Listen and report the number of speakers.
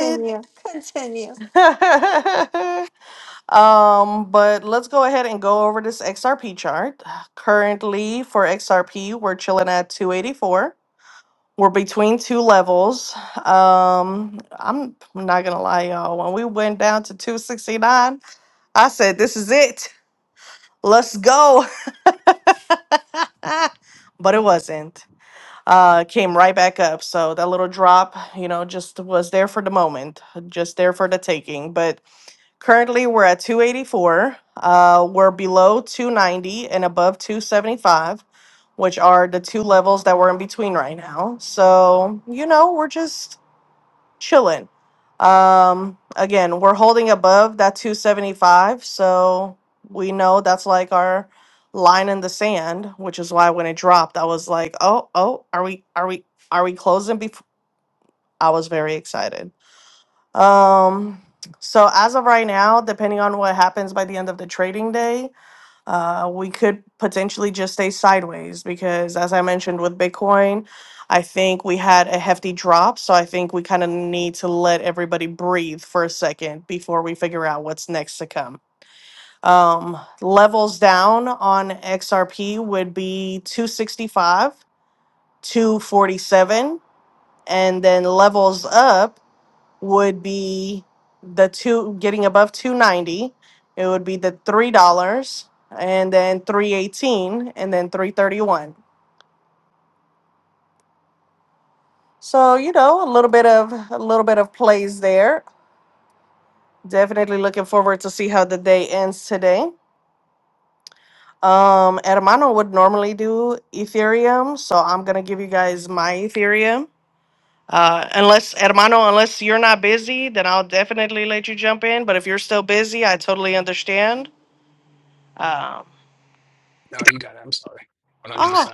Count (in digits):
3